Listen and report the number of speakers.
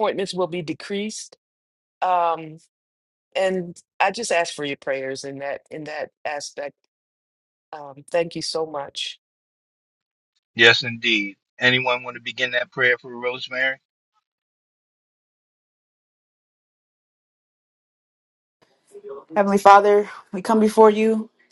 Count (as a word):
three